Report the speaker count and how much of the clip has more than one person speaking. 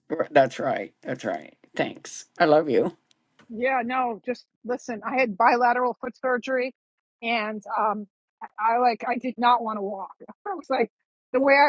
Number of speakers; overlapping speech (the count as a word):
two, no overlap